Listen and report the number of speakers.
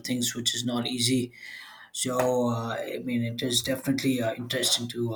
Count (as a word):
one